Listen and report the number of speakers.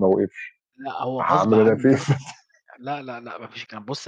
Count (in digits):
2